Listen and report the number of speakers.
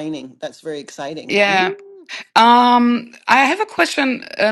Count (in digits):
2